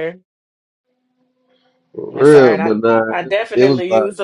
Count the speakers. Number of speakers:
two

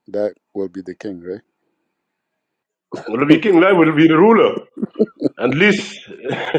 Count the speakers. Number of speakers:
two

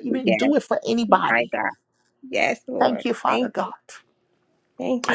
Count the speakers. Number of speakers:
two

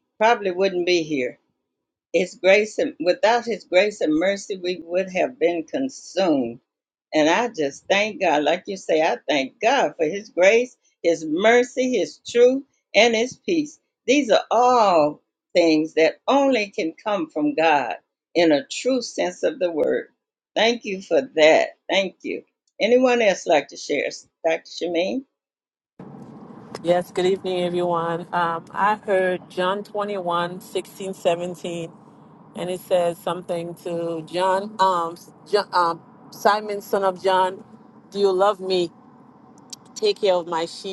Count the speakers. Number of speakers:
two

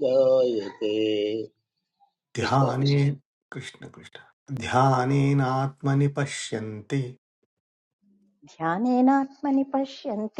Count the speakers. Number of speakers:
three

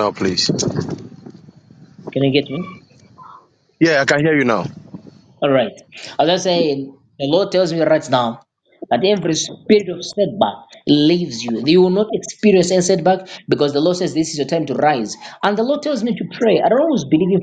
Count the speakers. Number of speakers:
two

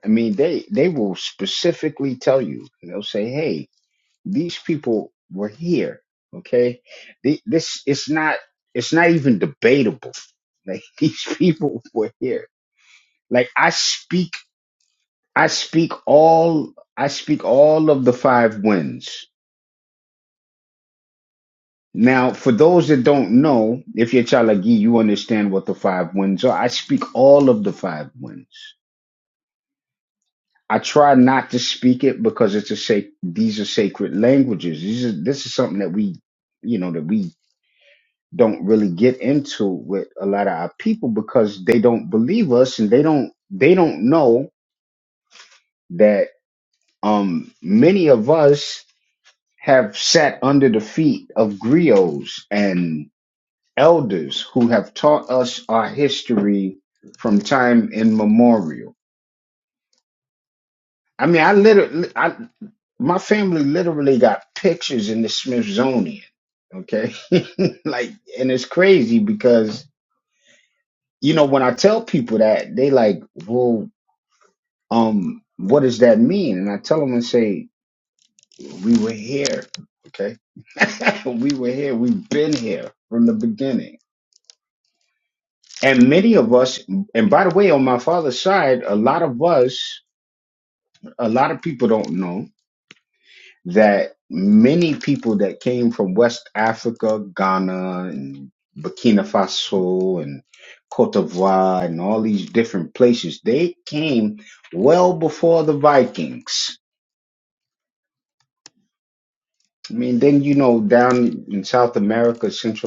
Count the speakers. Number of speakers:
one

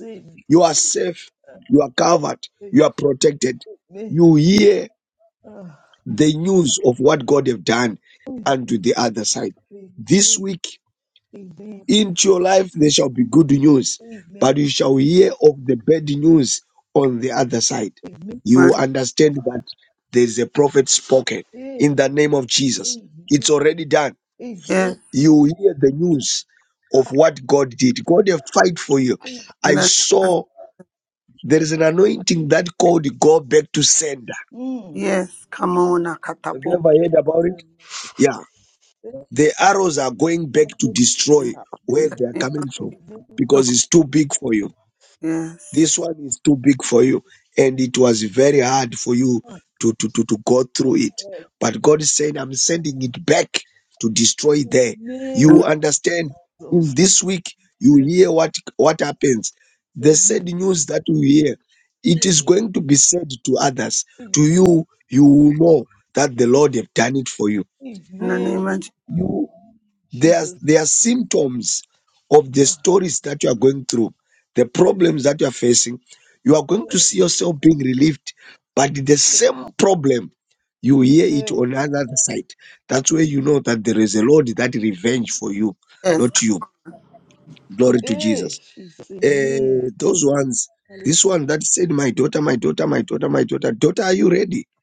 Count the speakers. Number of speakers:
three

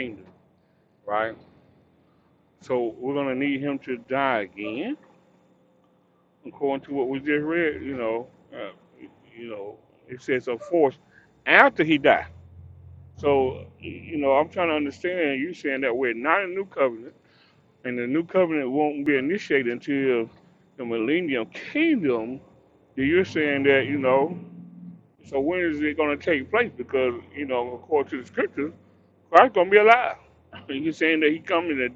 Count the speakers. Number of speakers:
one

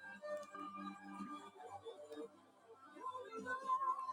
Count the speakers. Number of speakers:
zero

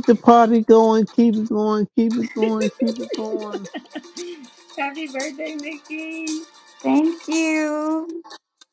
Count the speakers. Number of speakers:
three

